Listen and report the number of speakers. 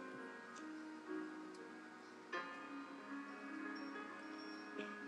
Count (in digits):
0